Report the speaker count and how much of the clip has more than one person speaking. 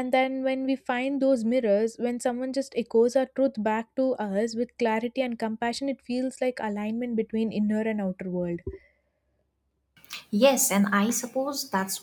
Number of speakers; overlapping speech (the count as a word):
two, no overlap